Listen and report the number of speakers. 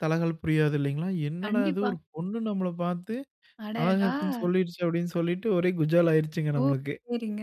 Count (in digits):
2